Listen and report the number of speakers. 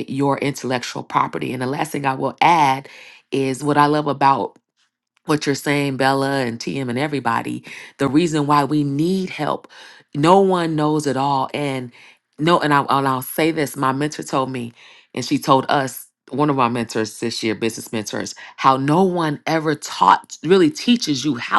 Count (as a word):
one